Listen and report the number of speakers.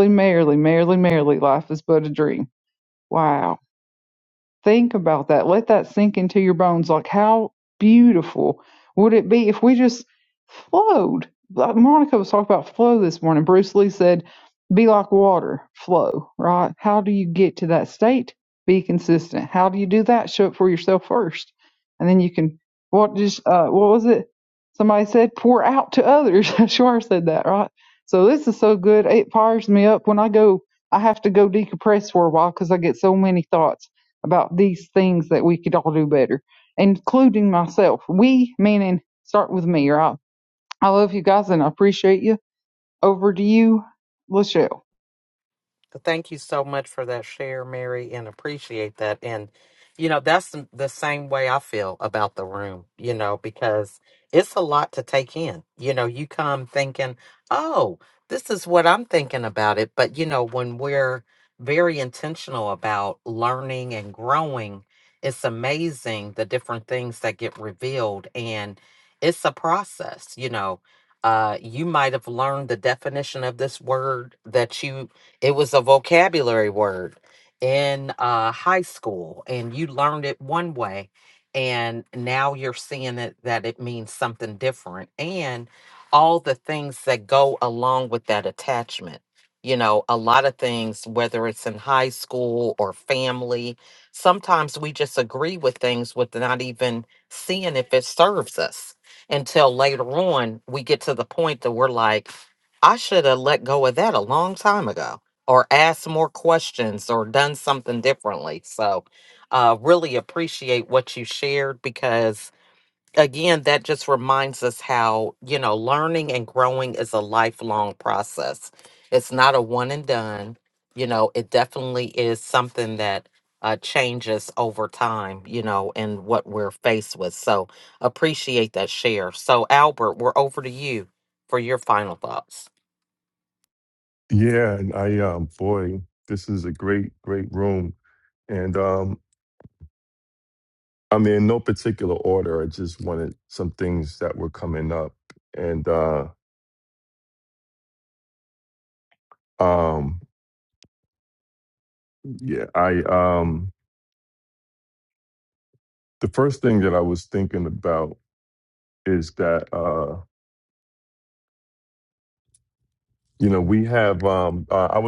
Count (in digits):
3